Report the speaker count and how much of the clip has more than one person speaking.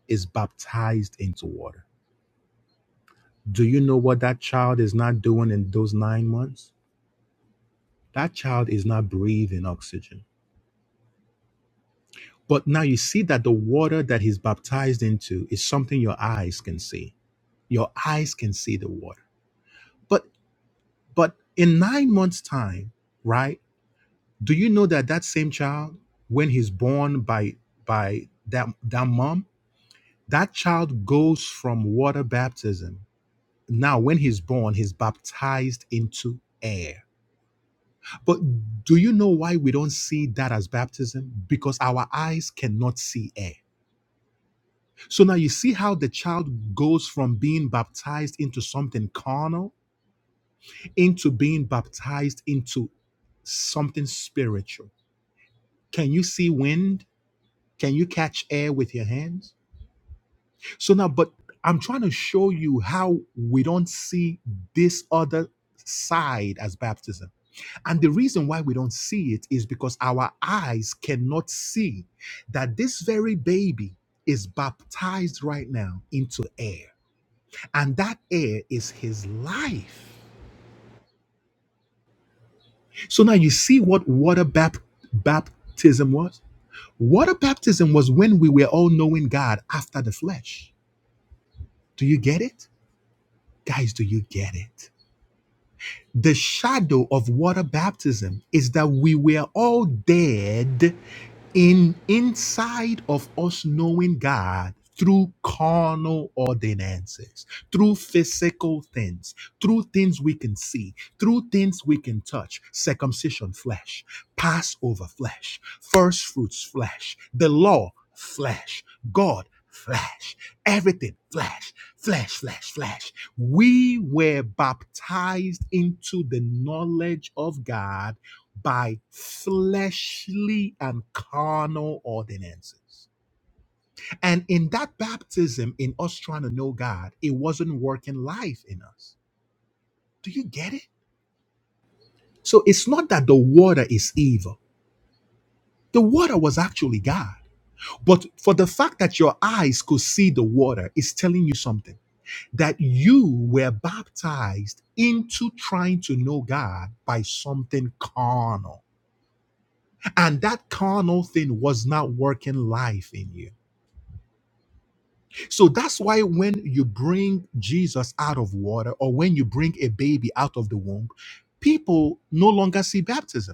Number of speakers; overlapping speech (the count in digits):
1, no overlap